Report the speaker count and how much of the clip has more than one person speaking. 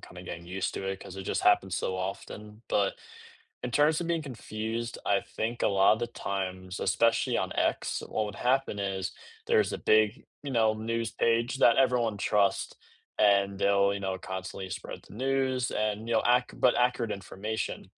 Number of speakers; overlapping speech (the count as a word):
one, no overlap